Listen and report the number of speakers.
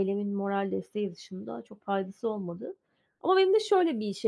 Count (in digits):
1